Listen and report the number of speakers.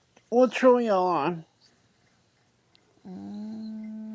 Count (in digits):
2